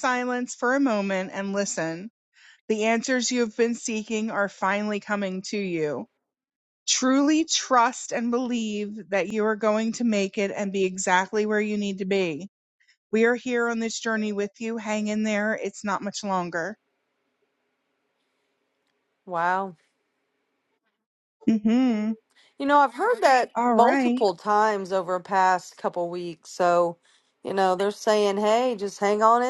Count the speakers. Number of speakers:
two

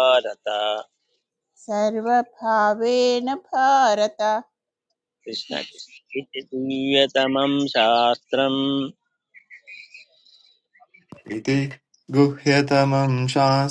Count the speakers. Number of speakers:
three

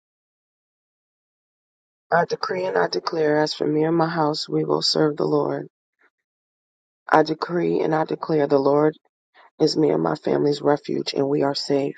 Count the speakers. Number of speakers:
one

